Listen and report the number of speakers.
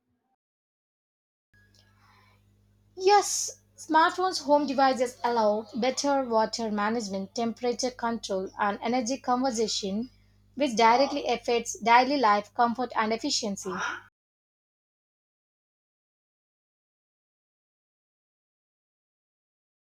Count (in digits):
1